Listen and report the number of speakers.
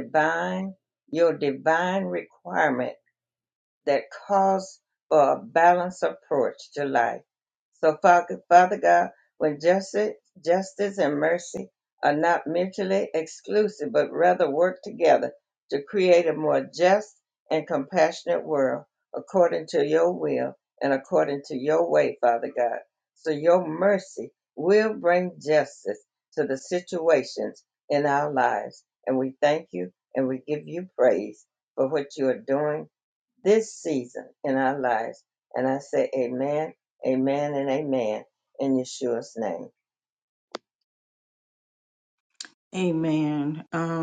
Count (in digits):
2